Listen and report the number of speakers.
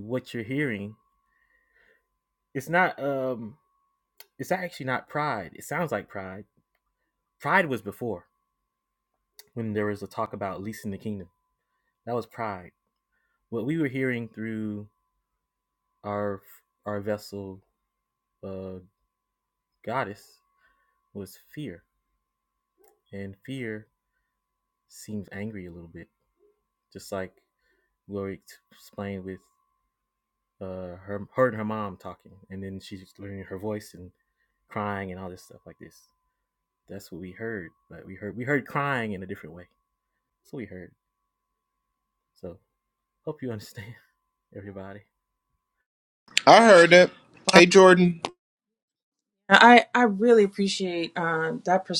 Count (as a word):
three